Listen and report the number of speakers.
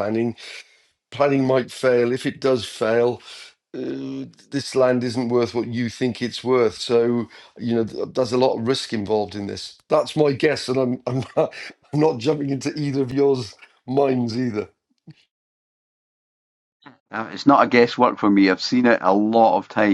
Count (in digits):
2